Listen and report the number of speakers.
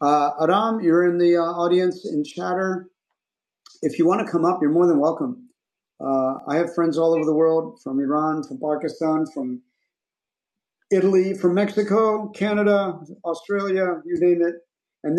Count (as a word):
one